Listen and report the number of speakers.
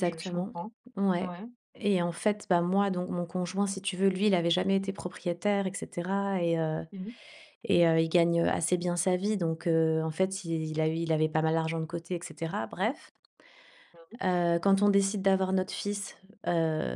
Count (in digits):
2